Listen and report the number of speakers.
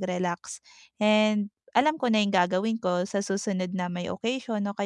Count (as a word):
one